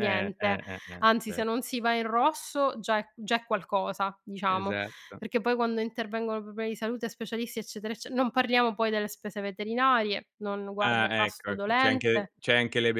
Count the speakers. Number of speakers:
two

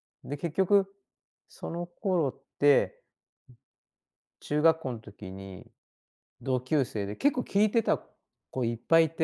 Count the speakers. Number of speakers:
one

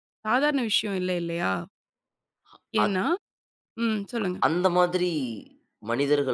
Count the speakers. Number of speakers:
two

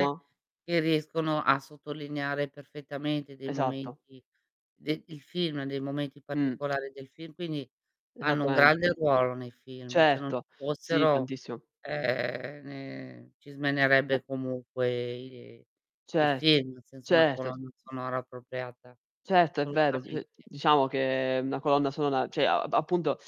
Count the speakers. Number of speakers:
two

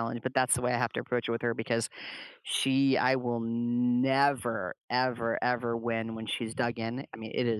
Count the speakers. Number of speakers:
one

